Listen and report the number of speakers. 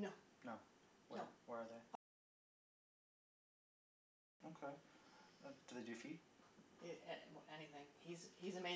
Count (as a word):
two